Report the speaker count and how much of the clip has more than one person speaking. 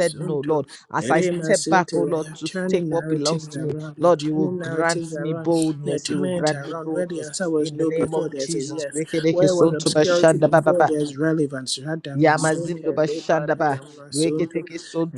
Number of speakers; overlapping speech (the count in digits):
2, about 77%